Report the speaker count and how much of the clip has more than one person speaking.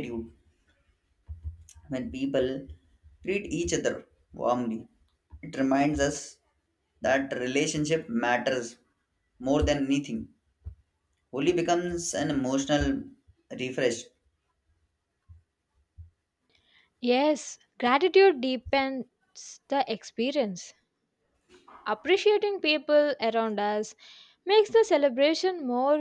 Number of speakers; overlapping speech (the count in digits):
2, no overlap